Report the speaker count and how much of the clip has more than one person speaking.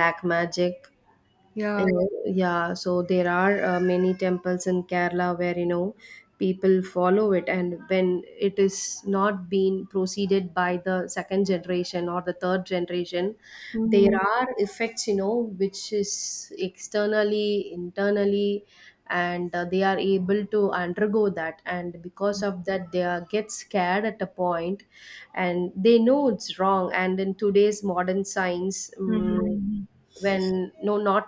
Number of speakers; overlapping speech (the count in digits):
2, about 3%